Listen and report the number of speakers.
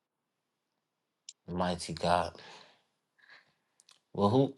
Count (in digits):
1